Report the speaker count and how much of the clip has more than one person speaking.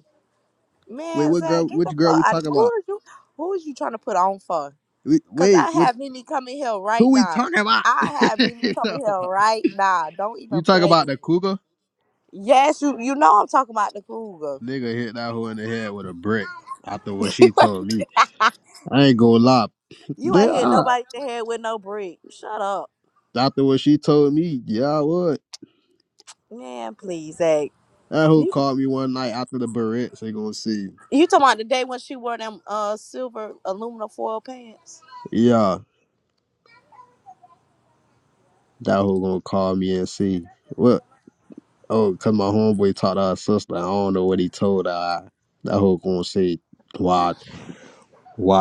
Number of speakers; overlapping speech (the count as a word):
two, about 9%